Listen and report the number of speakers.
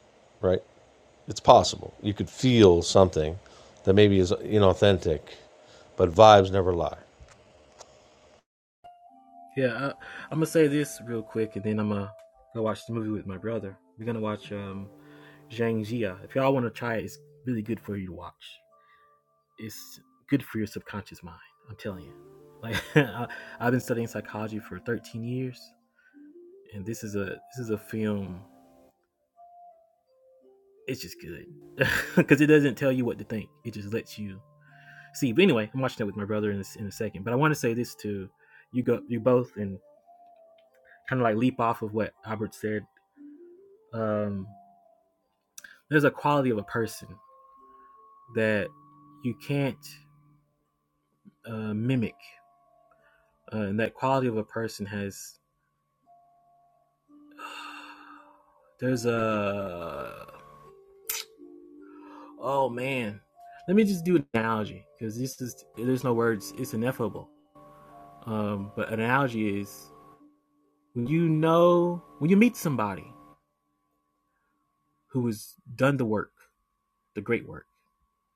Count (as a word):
two